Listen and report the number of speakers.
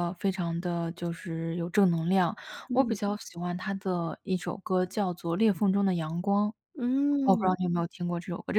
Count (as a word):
two